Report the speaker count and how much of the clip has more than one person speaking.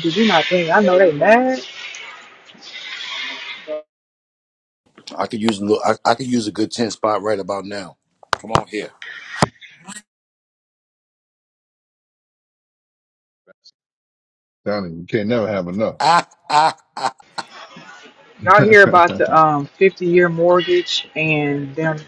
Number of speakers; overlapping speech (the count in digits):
3, no overlap